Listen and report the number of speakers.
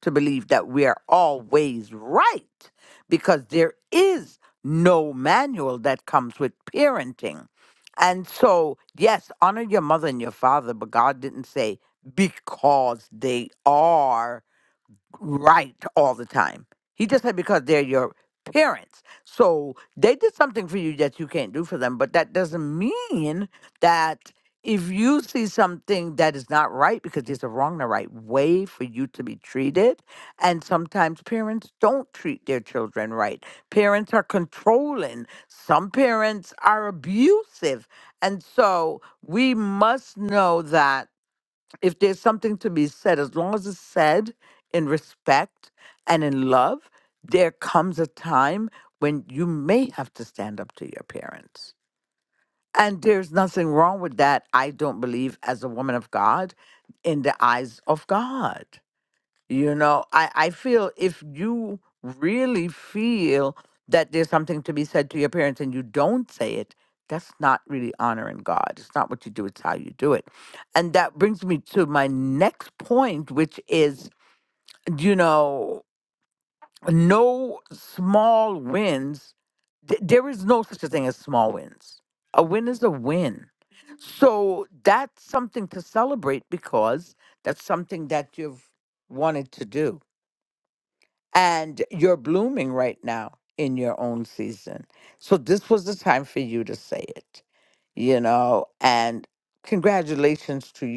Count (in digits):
1